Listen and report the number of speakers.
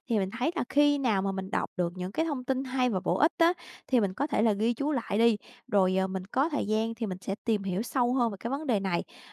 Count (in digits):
1